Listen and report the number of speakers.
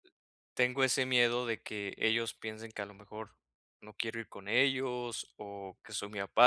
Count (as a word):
one